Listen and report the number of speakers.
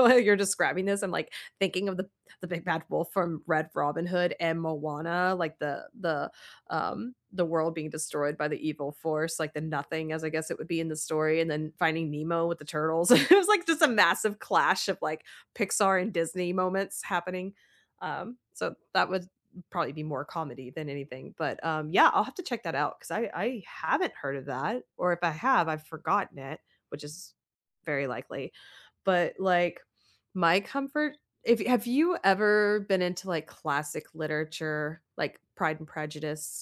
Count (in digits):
1